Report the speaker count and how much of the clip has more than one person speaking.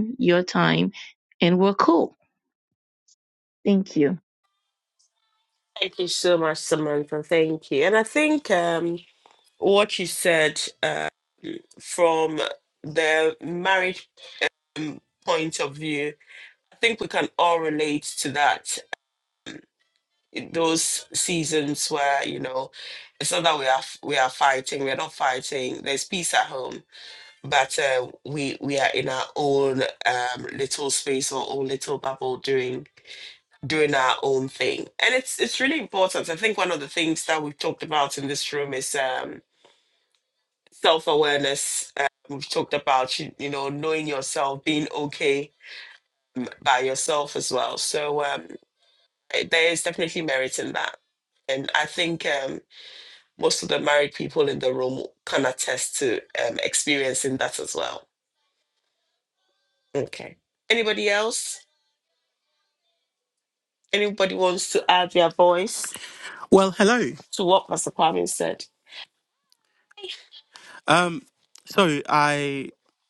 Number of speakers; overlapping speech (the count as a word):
three, no overlap